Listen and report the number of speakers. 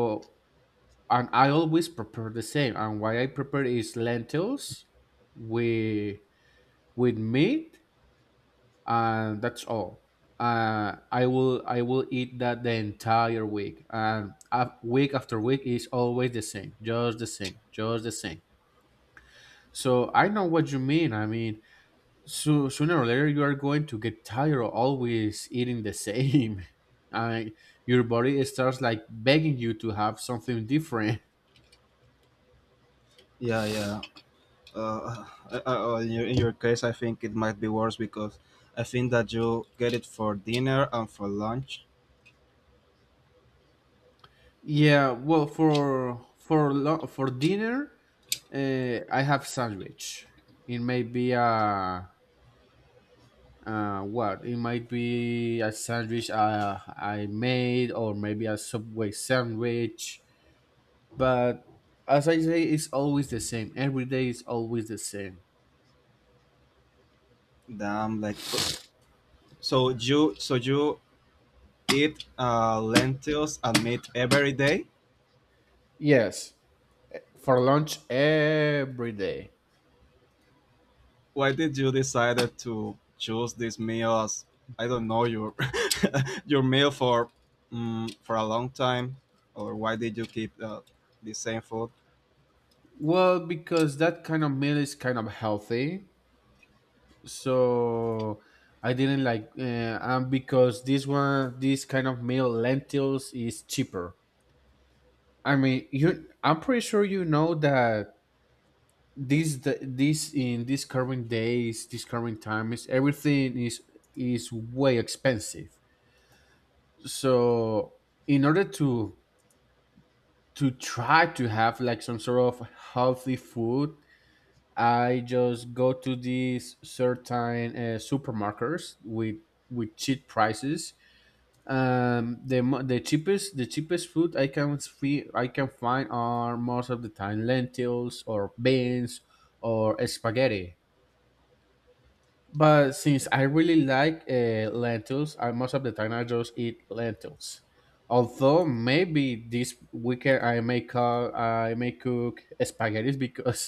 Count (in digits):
2